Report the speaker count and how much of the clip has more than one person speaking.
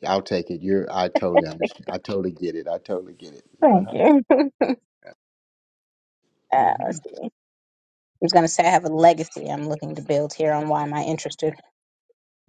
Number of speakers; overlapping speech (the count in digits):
2, about 6%